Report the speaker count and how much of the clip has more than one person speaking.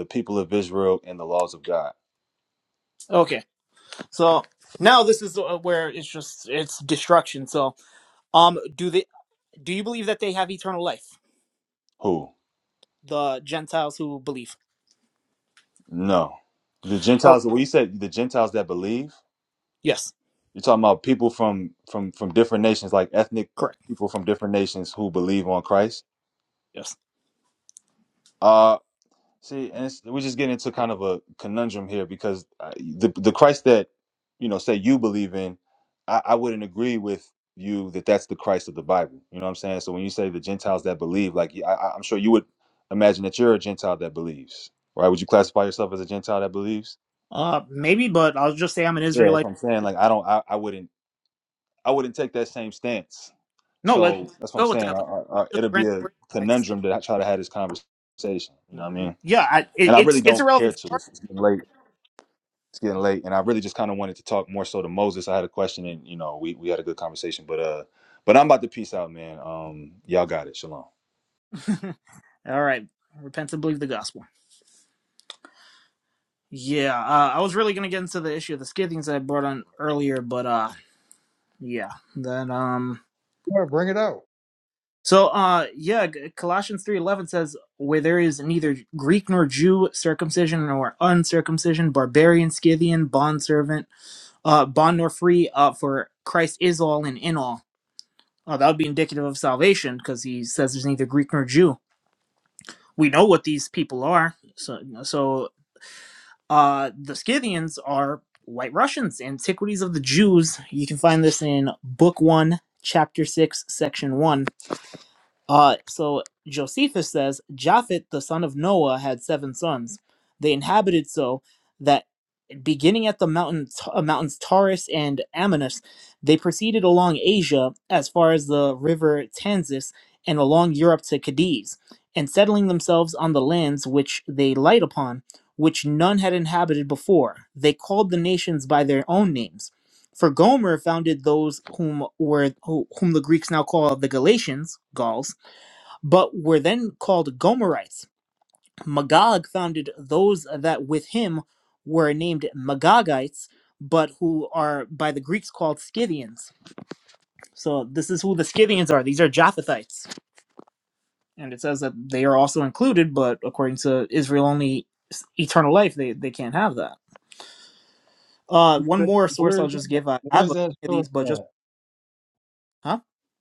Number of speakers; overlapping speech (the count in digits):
3, about 3%